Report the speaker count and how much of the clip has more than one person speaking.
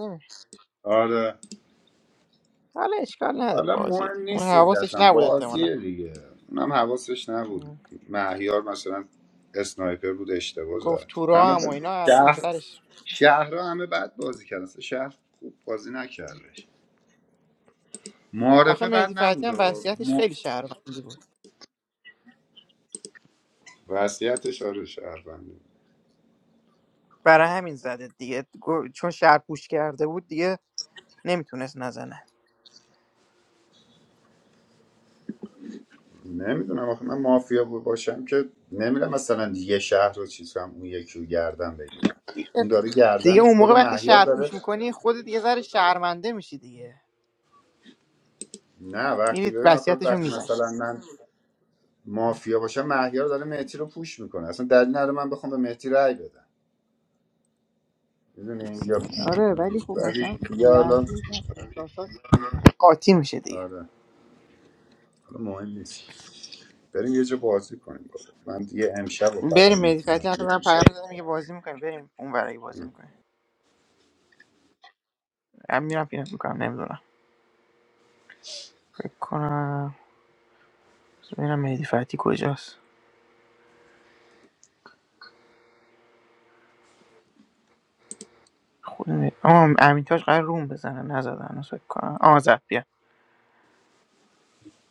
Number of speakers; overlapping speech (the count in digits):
2, about 10%